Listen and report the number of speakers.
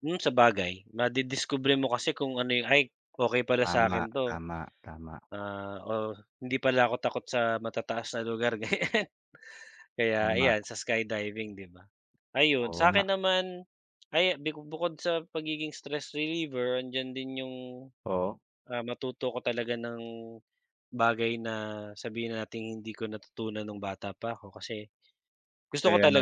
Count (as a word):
two